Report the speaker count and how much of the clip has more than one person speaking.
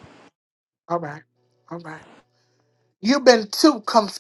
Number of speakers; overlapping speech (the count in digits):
1, no overlap